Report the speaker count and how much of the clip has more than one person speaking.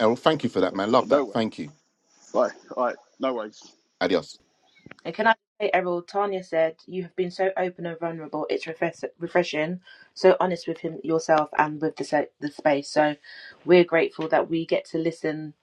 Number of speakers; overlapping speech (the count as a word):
three, about 3%